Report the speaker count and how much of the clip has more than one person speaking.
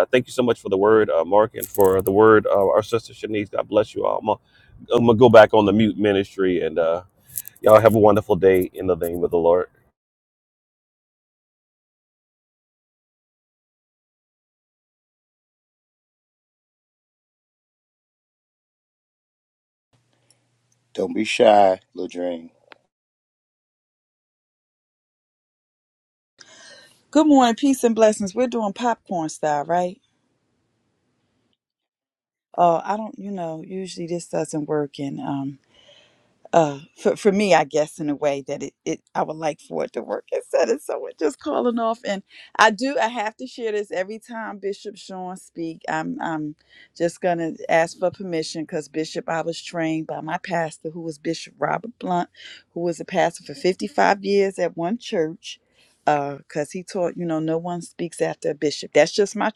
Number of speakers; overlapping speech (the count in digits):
3, no overlap